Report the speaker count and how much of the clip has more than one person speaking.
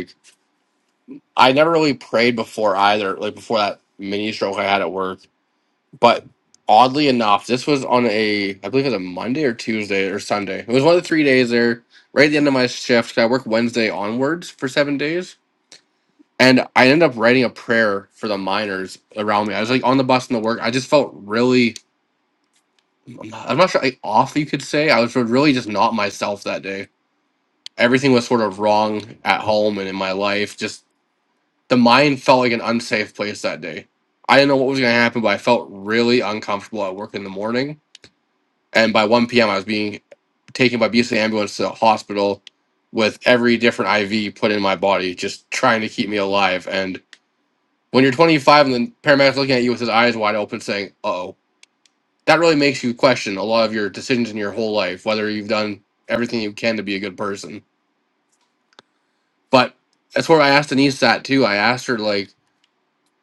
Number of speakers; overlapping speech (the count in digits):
1, no overlap